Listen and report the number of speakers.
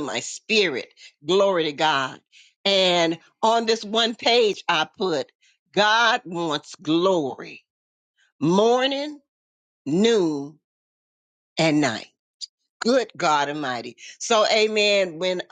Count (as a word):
one